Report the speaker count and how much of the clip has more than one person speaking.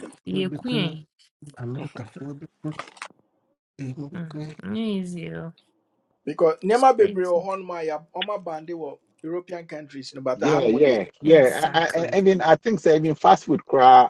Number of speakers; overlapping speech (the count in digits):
4, about 25%